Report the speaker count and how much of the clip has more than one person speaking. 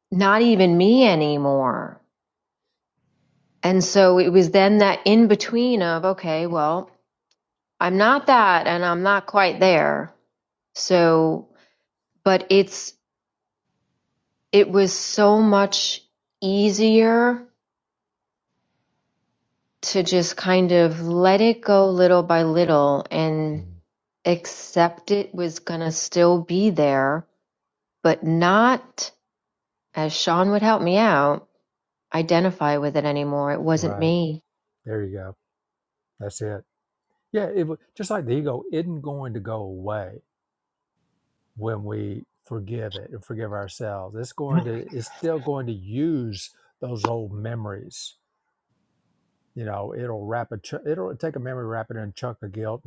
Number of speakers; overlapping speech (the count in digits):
2, about 1%